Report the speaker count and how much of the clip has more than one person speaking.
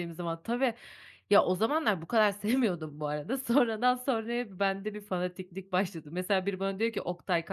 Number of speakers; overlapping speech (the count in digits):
1, no overlap